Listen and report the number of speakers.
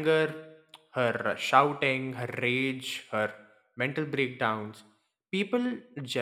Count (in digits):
1